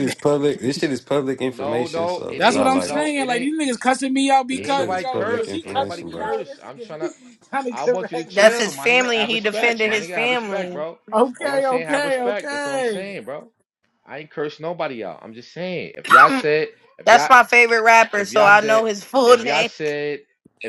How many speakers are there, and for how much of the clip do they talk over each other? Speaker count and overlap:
4, about 53%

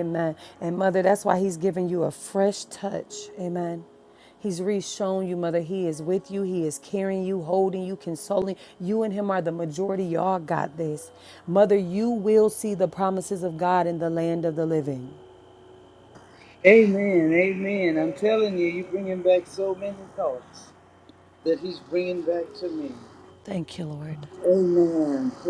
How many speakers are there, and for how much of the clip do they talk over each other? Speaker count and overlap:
2, no overlap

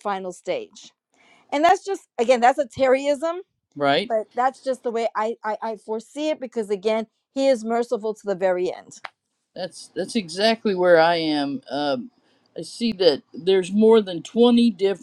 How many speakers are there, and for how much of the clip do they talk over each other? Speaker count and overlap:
2, no overlap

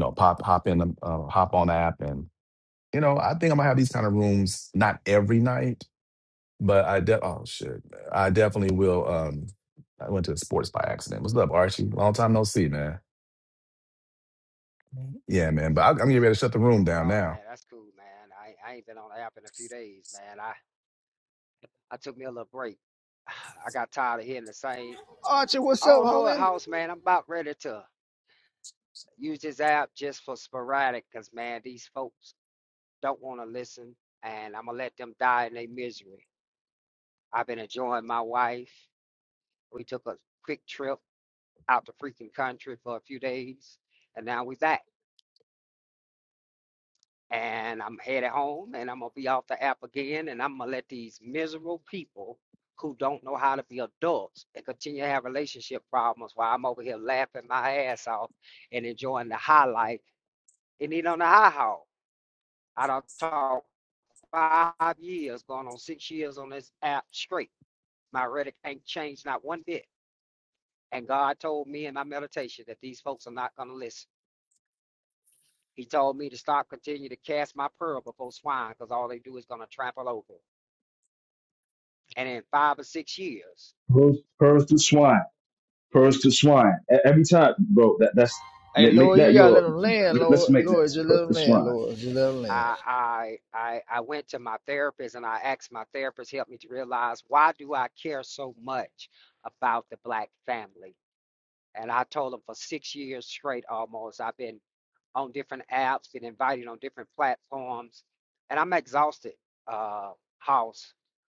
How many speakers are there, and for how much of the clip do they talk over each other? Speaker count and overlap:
4, about 4%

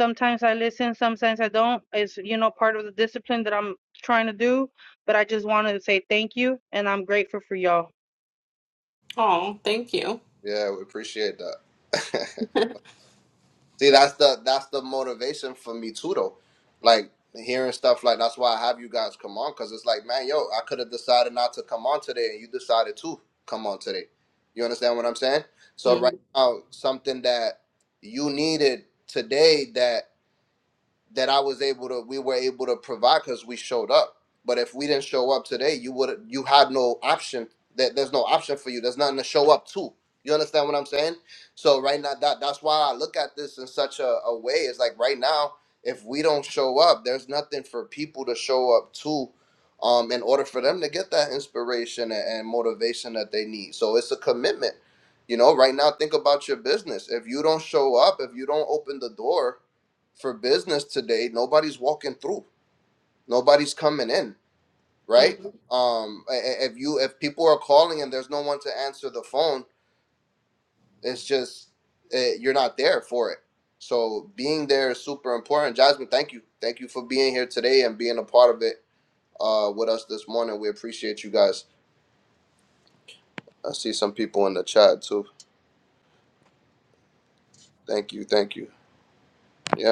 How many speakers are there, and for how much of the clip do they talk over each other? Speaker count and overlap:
3, under 1%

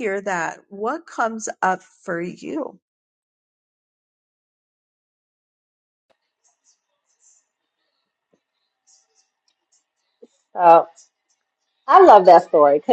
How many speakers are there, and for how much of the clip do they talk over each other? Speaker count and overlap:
2, no overlap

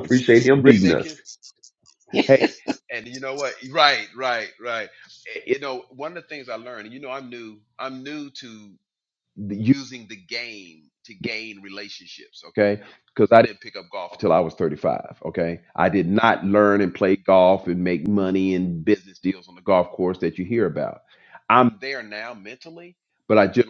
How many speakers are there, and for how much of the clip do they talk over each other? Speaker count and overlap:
2, about 2%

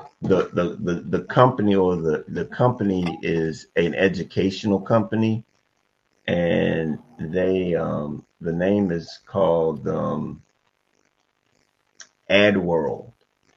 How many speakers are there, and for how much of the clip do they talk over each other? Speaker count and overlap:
1, no overlap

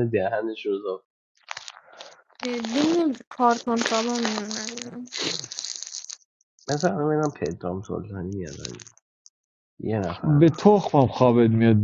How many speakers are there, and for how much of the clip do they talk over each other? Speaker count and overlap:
3, about 2%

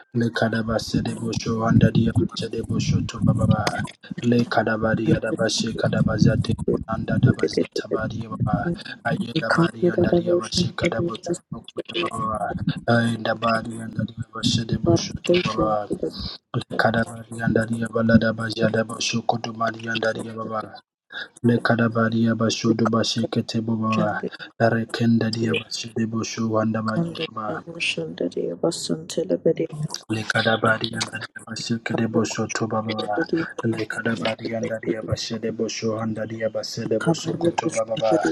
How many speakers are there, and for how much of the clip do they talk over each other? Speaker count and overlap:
2, about 10%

